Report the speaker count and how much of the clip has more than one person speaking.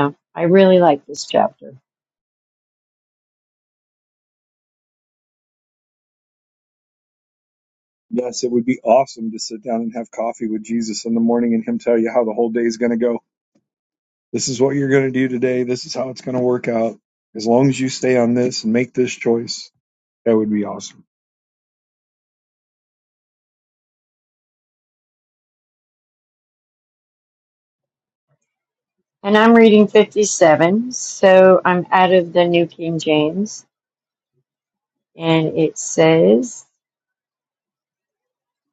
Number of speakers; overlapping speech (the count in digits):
2, no overlap